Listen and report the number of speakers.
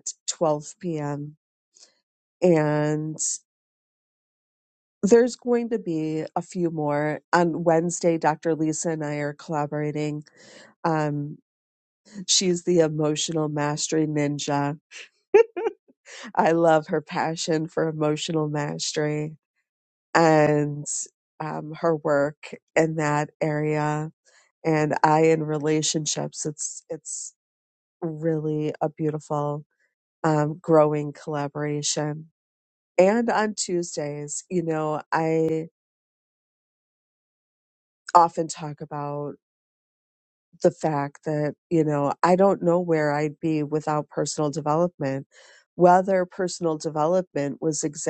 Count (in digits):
1